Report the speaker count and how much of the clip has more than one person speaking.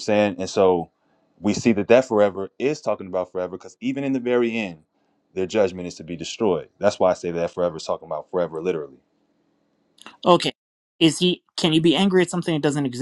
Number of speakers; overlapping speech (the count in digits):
2, no overlap